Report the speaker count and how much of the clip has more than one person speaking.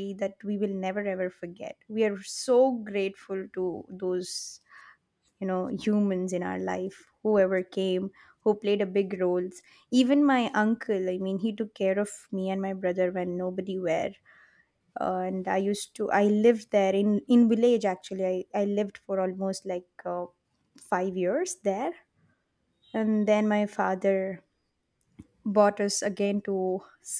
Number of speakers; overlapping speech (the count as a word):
one, no overlap